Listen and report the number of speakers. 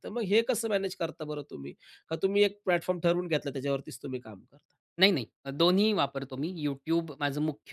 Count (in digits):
2